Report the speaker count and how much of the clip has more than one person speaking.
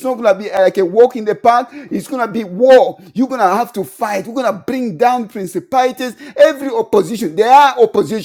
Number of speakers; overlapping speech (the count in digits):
1, no overlap